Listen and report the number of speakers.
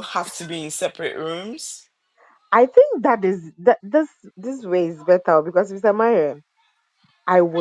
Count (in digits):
2